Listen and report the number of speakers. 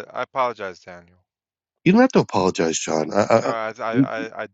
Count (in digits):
2